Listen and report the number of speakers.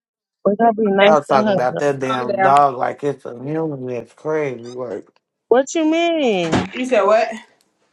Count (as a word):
three